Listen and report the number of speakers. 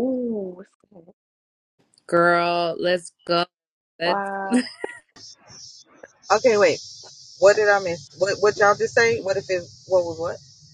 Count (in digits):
3